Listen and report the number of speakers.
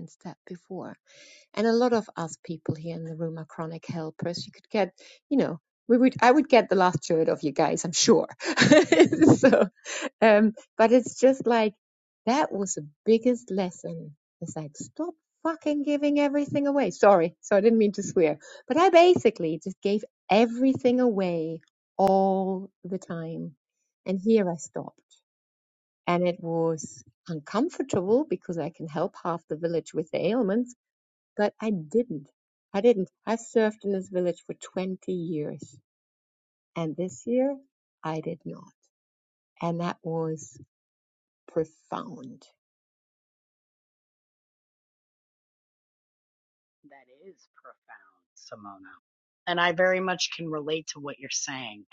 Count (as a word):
two